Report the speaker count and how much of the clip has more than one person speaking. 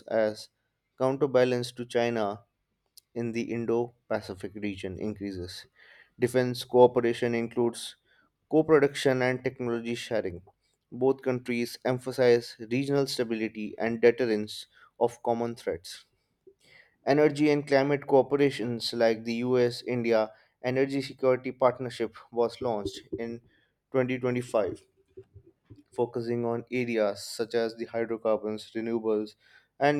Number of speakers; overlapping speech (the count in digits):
1, no overlap